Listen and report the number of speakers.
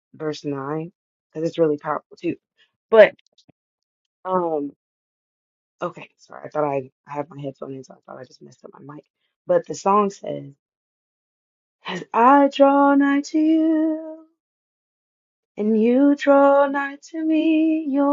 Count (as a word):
one